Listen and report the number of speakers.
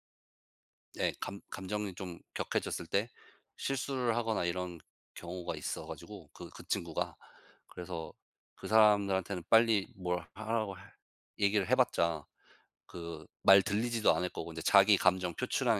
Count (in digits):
1